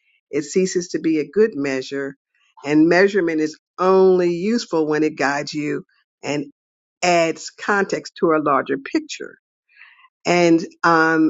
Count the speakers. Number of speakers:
one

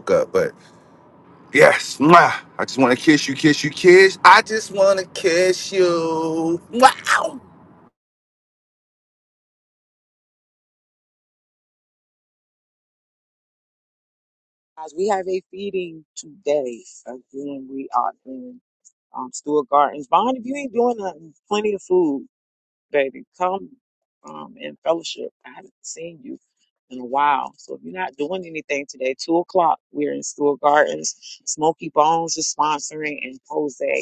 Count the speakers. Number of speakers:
two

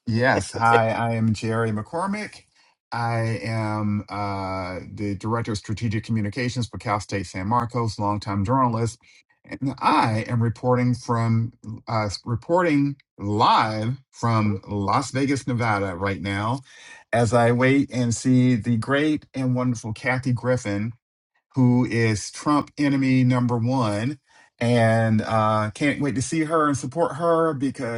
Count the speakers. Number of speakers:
one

